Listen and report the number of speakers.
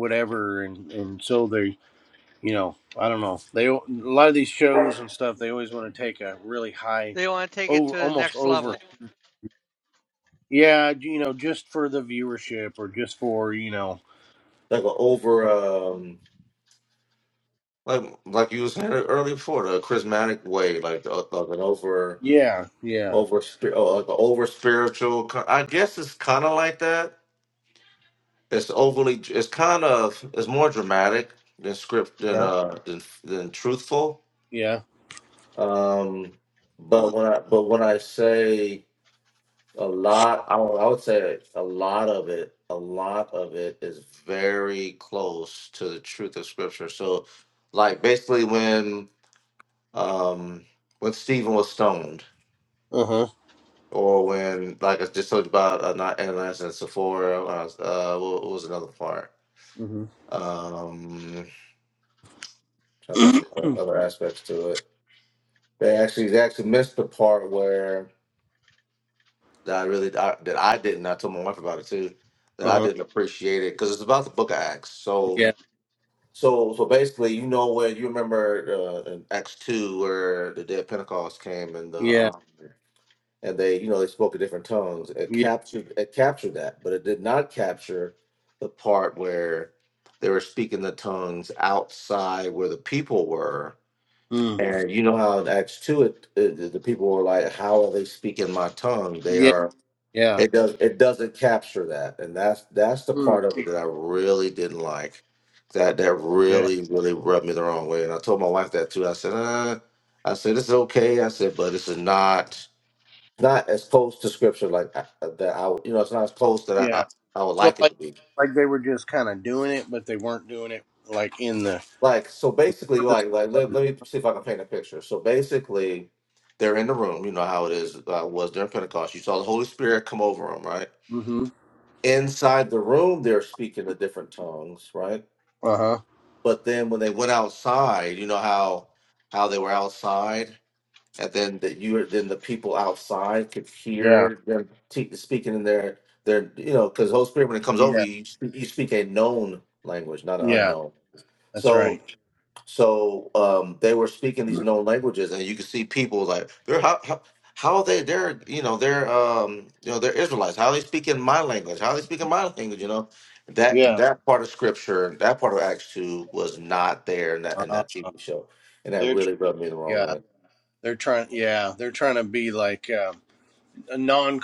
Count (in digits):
3